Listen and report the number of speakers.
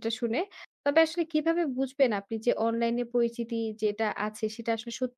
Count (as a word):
one